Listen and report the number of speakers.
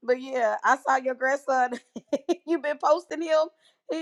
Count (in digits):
1